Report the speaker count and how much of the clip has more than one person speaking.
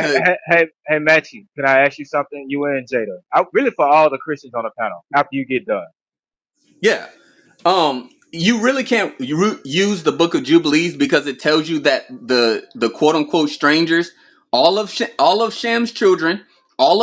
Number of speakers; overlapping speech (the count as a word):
two, about 1%